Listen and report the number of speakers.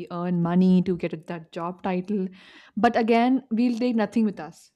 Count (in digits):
1